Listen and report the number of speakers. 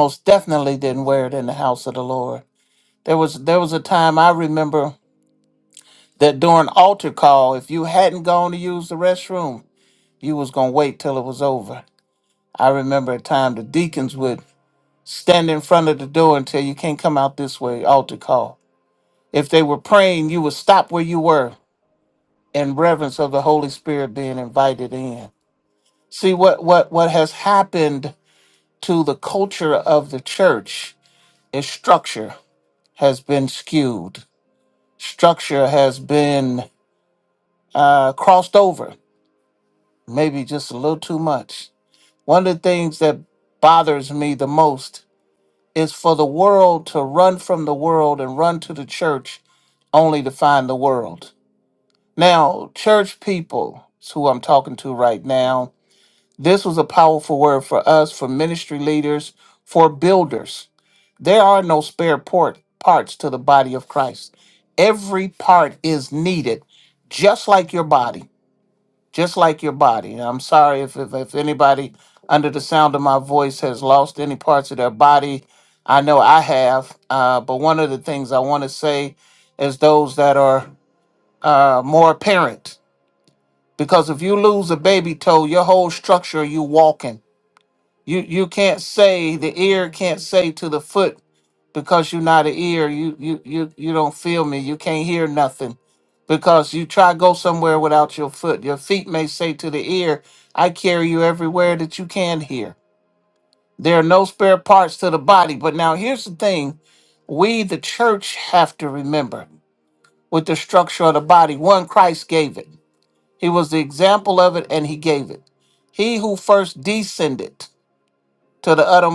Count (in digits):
1